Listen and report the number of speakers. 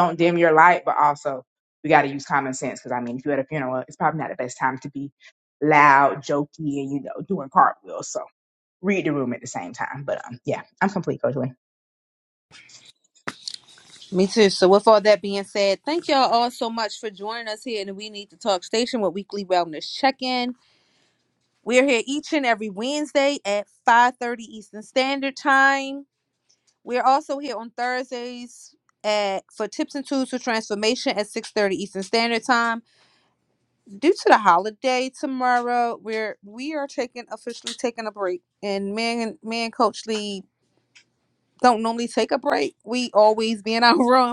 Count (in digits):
2